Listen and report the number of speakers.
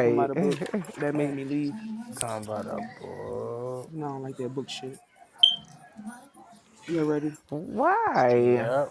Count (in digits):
3